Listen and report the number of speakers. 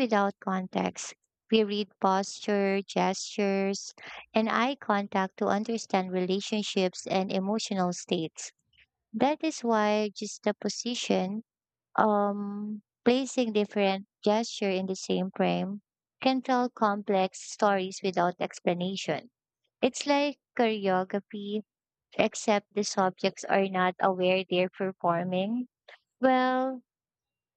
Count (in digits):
1